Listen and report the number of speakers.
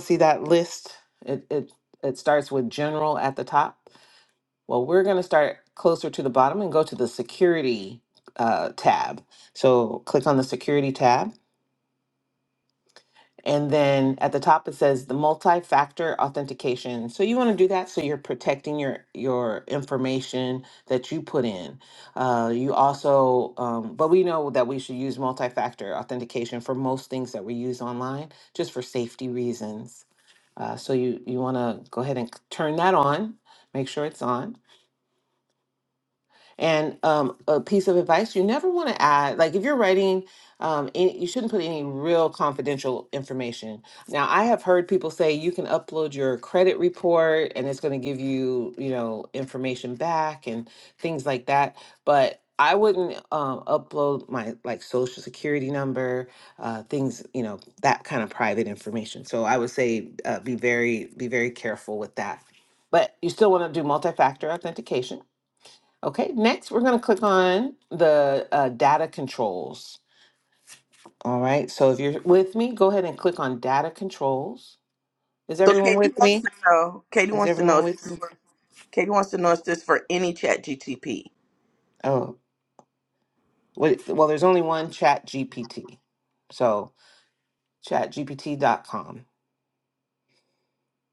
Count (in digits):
2